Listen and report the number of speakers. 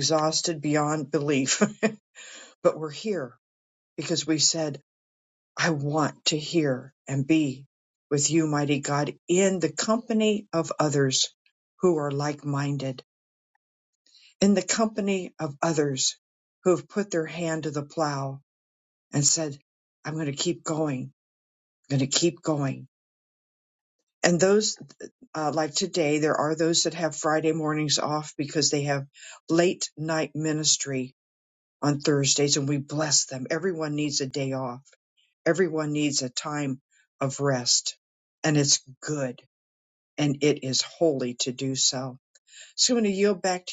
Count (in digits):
1